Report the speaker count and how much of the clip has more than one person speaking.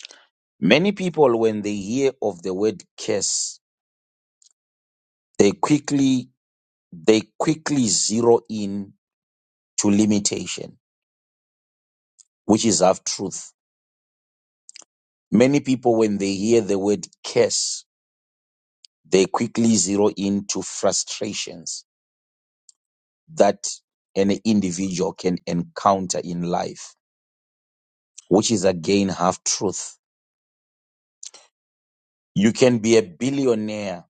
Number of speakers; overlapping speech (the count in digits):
1, no overlap